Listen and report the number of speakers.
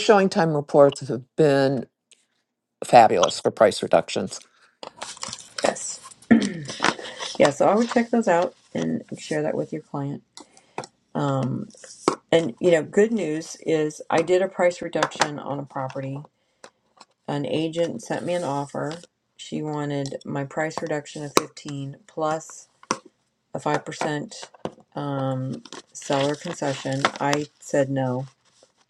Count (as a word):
two